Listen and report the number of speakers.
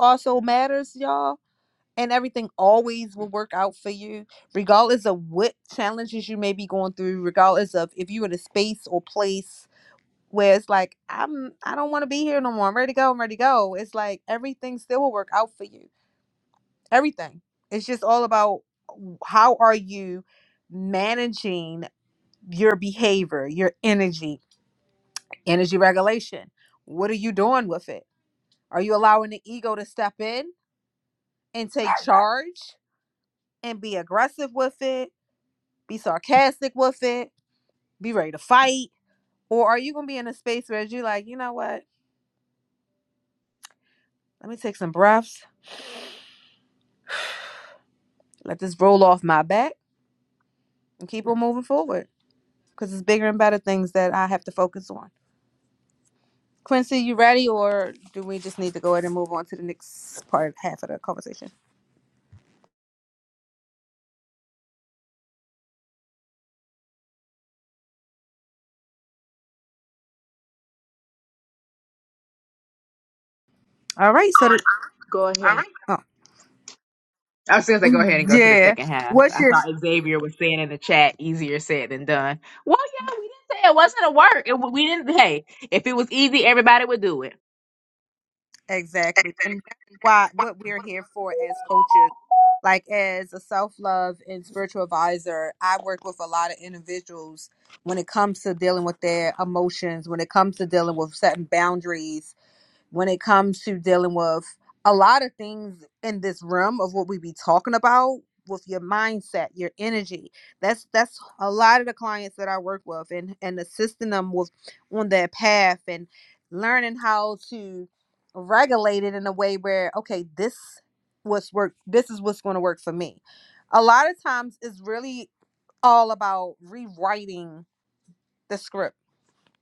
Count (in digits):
2